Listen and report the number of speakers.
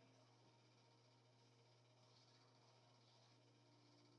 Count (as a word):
zero